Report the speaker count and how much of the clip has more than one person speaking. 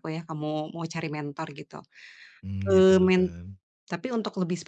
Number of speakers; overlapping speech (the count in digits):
2, about 13%